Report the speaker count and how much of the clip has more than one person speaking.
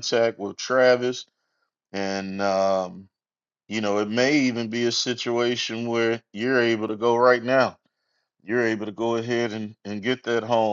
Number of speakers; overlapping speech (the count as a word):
one, no overlap